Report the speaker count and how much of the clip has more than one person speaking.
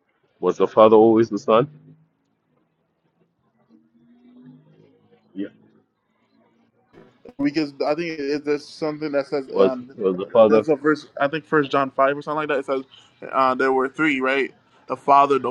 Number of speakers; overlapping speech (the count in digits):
2, about 4%